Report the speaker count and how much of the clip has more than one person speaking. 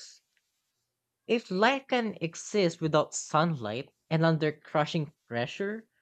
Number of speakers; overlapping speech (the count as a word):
one, no overlap